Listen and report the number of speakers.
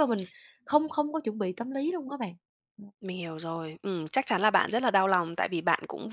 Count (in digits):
2